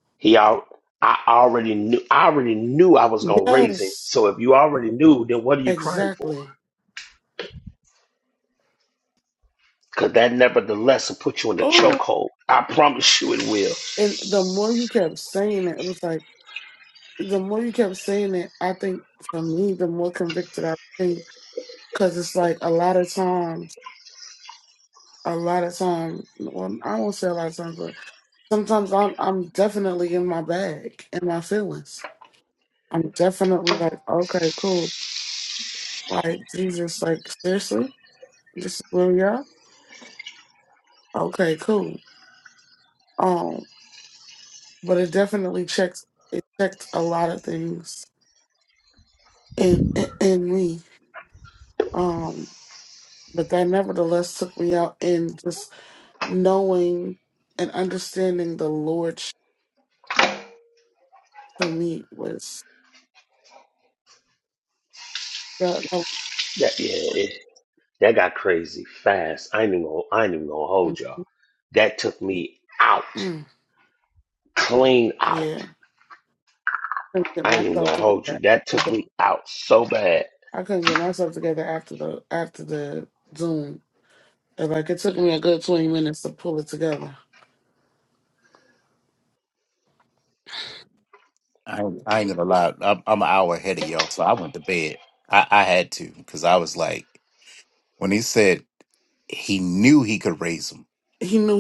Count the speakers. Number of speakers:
3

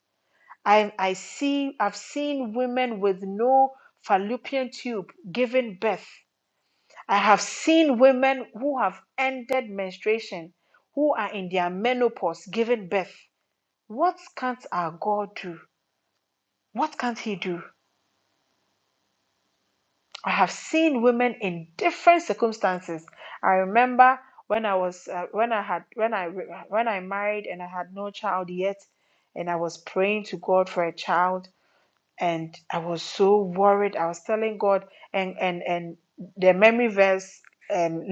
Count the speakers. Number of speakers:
1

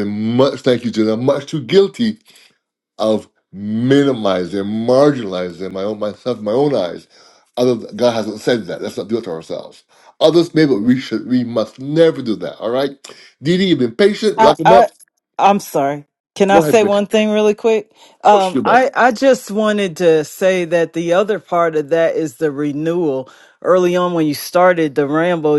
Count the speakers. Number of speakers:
2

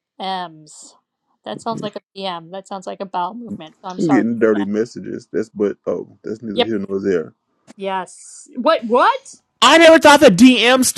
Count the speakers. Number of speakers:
3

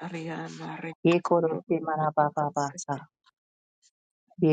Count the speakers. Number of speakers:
2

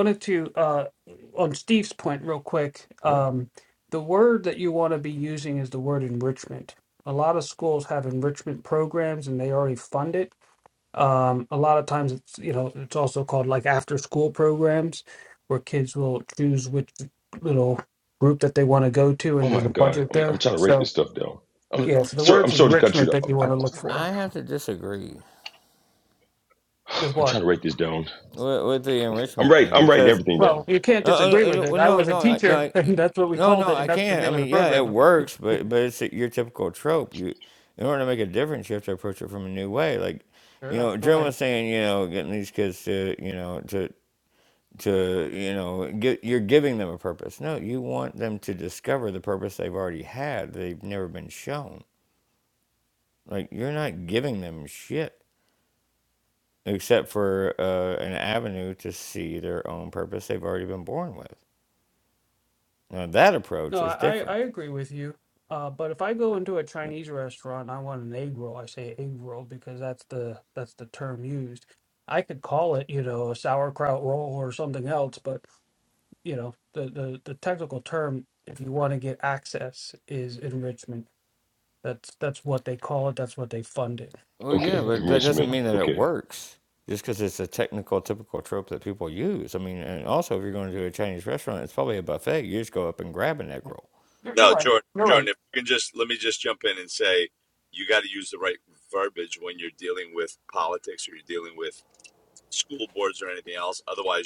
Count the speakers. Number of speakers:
4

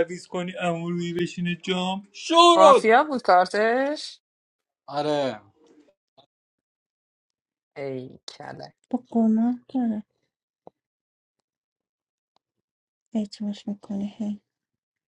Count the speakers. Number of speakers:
3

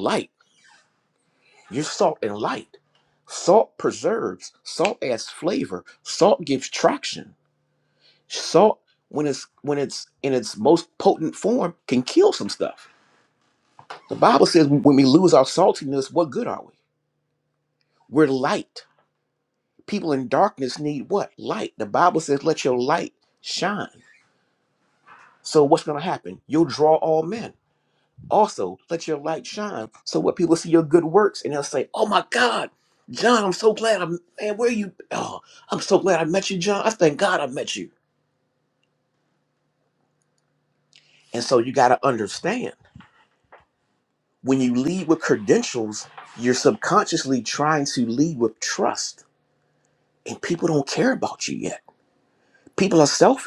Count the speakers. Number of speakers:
1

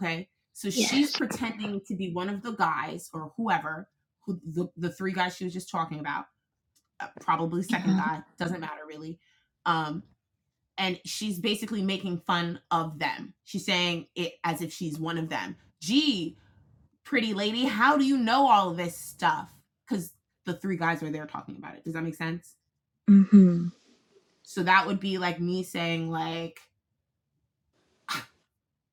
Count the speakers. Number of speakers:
2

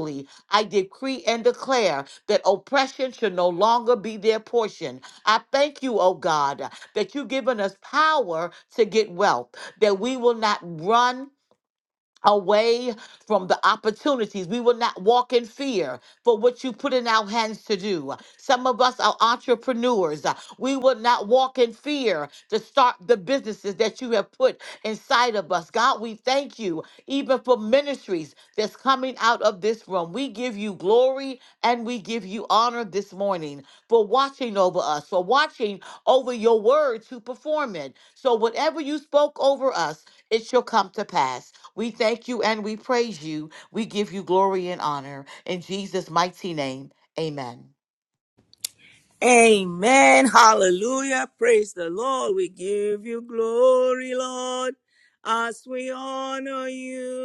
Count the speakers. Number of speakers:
2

